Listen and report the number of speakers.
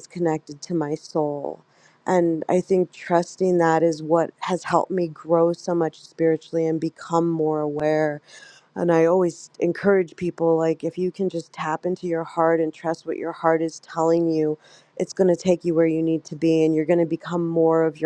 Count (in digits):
1